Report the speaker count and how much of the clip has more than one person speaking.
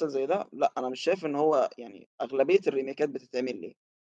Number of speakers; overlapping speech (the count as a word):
one, no overlap